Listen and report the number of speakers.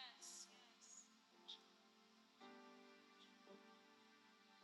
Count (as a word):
zero